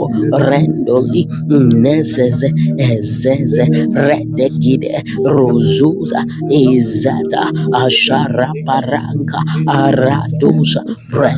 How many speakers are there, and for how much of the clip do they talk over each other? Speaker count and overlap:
1, no overlap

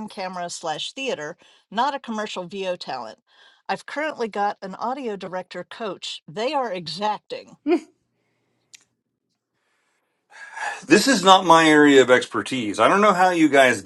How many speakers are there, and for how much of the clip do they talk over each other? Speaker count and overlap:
2, no overlap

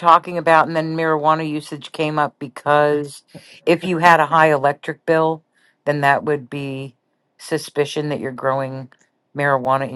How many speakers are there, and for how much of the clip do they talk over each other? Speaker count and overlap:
1, no overlap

